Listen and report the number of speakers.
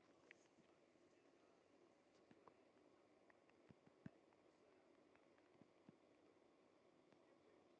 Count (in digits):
0